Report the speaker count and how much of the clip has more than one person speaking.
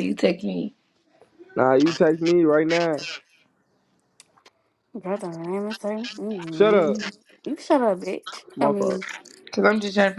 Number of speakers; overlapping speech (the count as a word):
three, about 9%